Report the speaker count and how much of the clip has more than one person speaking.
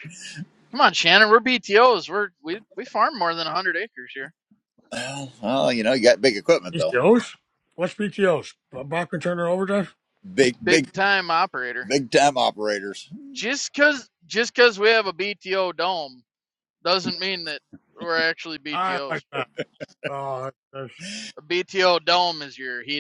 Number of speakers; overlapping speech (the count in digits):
3, about 4%